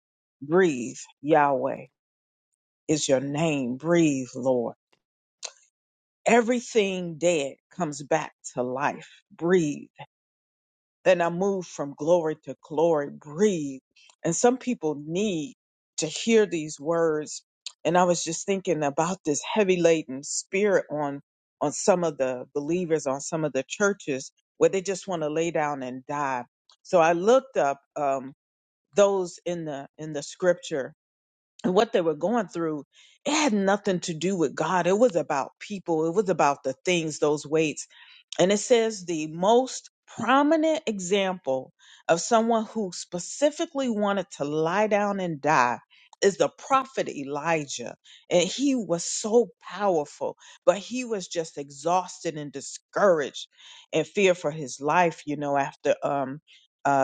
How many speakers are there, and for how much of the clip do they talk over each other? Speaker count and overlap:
one, no overlap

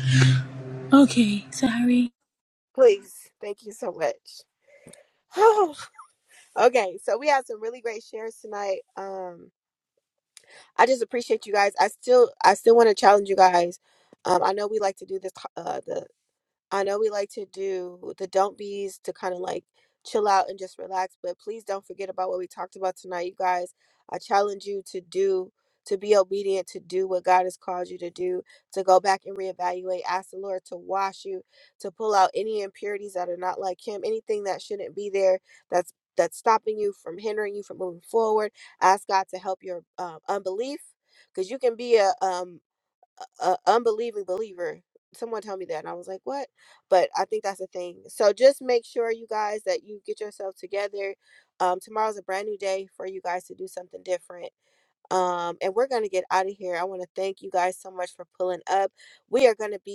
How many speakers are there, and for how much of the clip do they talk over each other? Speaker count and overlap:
two, no overlap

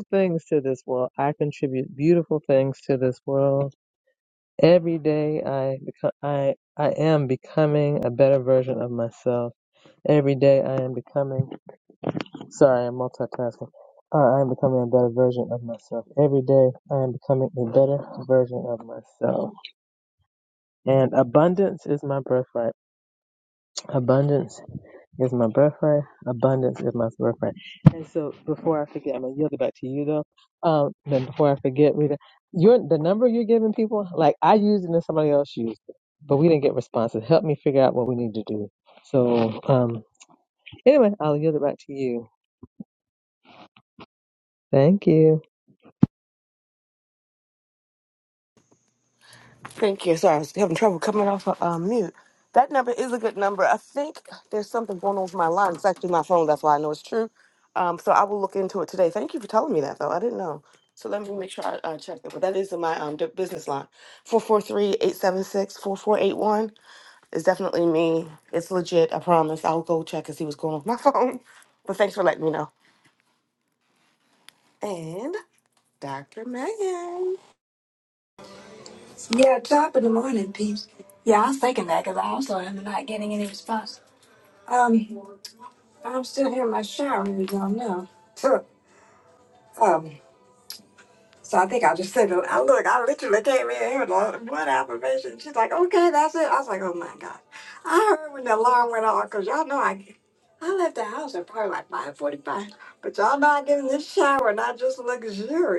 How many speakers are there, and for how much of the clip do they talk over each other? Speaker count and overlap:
three, no overlap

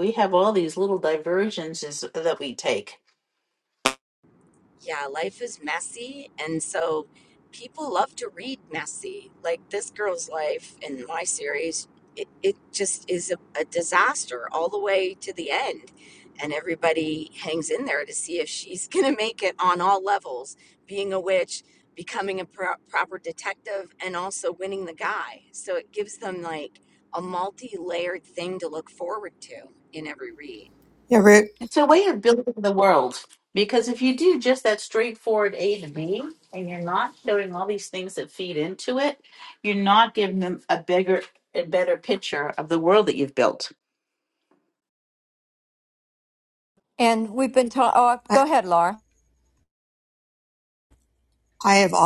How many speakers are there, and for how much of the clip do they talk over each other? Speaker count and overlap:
four, under 1%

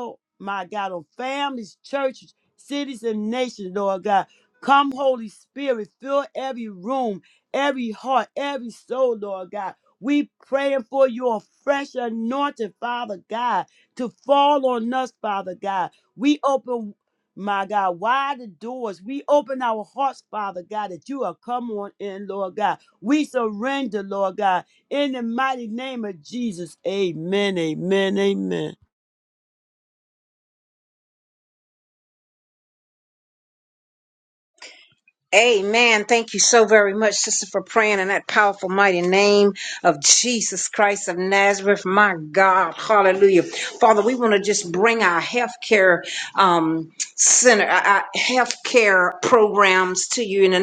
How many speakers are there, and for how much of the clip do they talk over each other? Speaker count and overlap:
two, no overlap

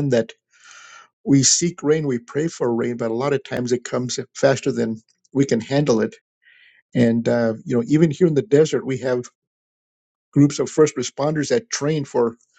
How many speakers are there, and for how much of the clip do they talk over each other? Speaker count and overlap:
one, no overlap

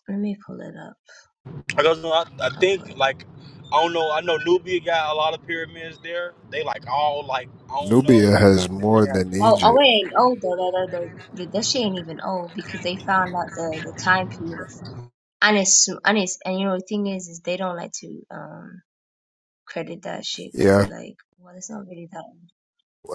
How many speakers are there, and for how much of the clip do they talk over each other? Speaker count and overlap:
three, about 9%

